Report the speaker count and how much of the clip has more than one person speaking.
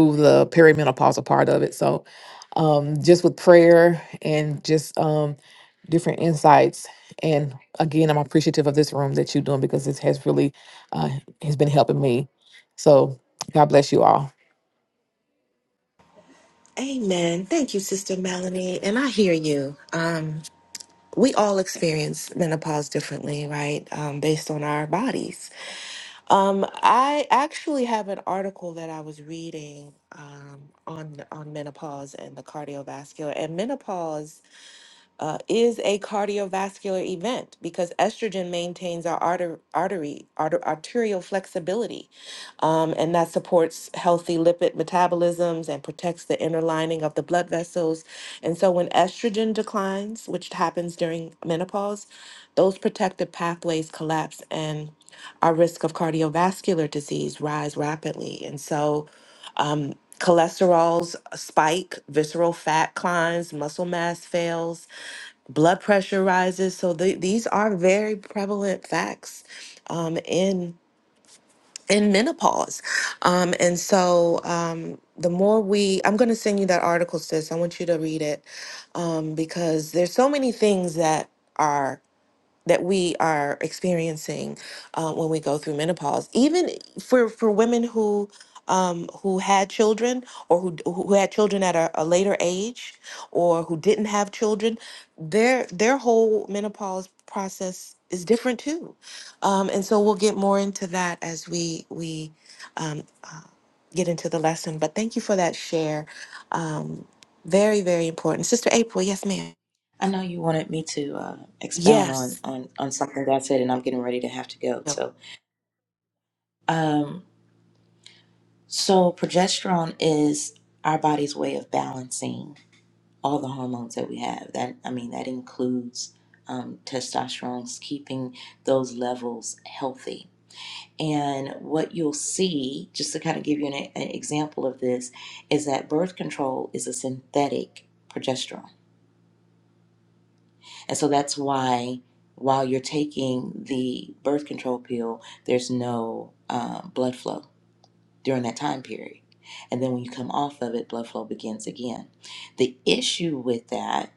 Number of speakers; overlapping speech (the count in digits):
3, under 1%